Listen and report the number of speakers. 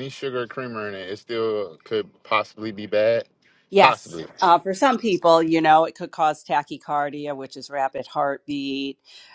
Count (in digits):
2